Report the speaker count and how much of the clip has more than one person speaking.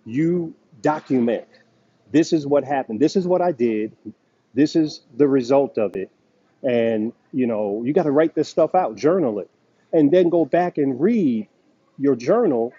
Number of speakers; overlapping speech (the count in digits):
1, no overlap